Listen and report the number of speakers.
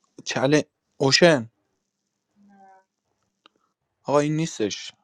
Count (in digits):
1